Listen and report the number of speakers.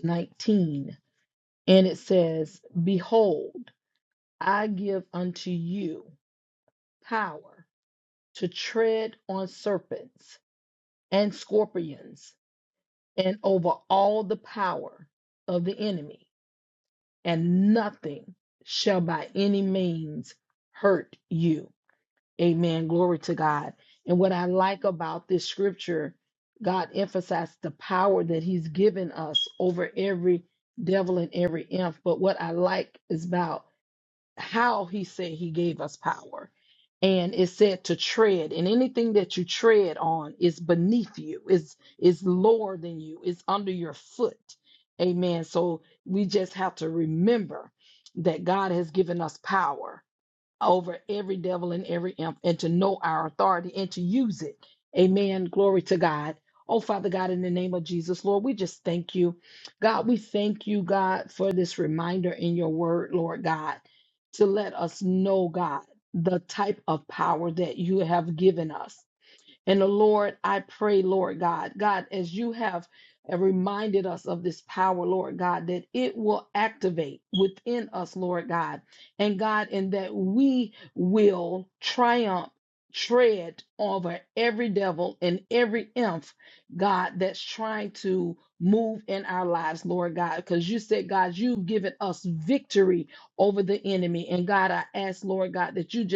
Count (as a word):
one